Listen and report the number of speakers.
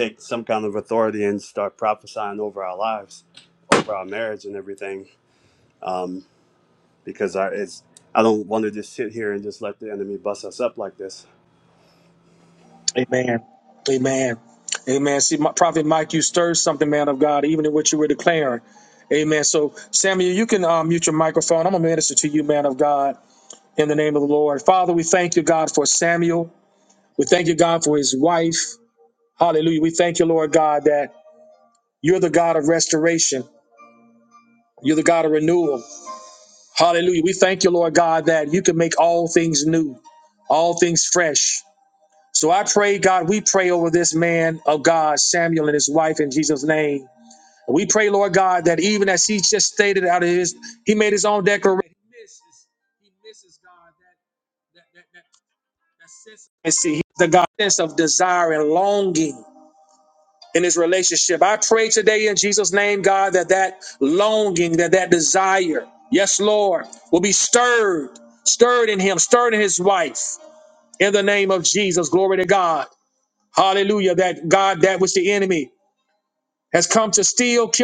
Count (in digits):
2